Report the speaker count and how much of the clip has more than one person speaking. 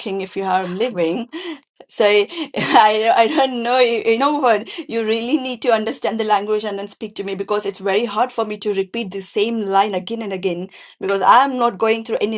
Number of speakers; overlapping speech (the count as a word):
one, no overlap